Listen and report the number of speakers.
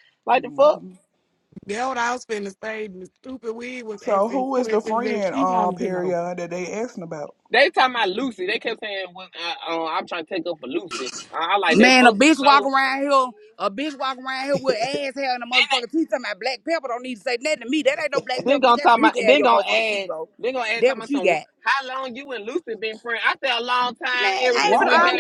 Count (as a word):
four